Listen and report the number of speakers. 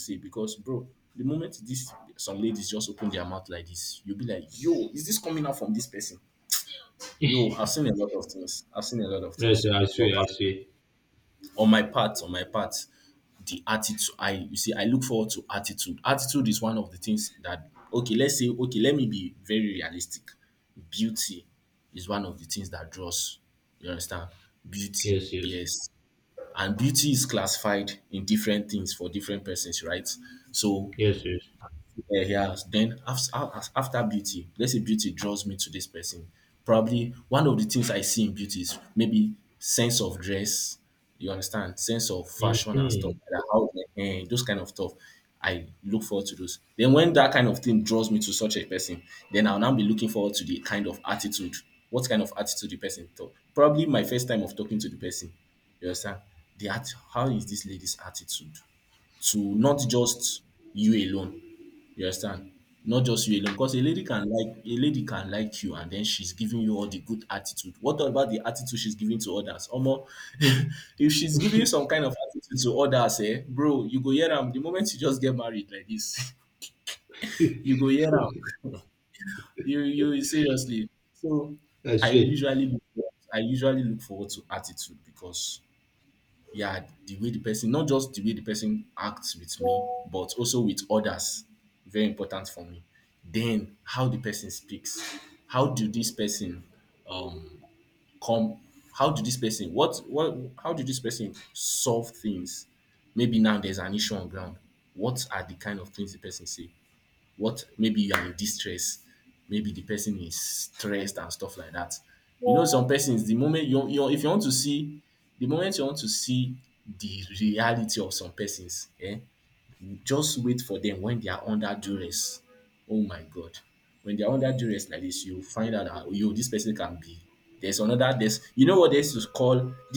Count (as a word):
two